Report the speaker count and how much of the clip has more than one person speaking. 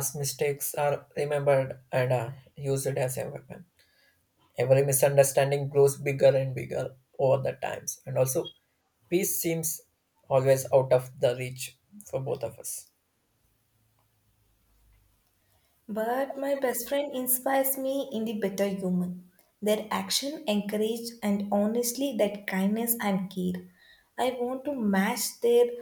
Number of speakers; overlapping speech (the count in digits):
2, no overlap